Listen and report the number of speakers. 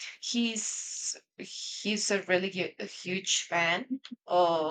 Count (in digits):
1